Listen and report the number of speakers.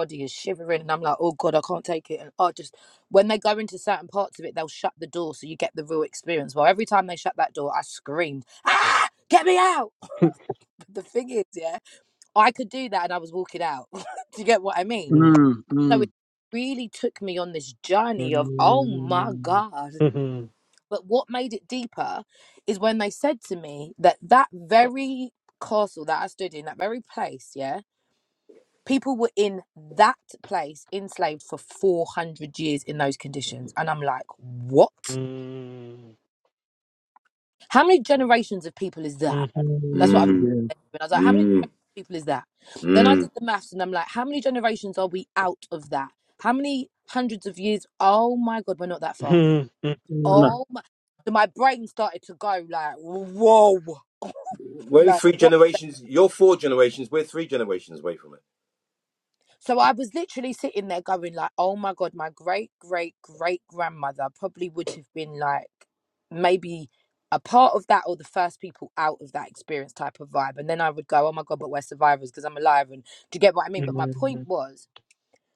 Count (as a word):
four